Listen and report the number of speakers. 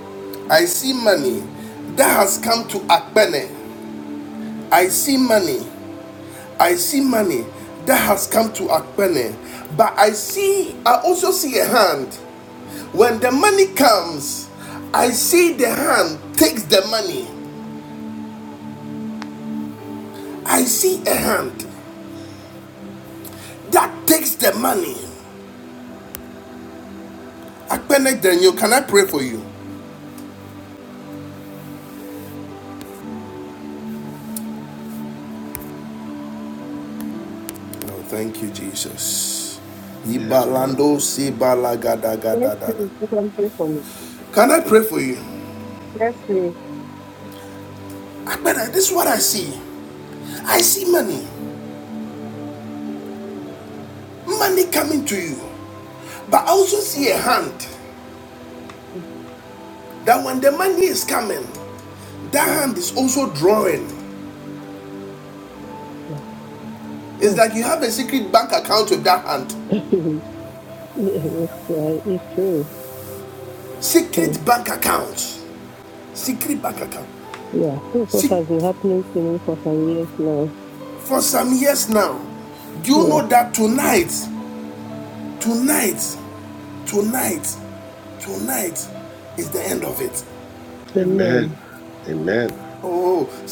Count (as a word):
three